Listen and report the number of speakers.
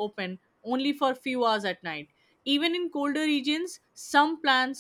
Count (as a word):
one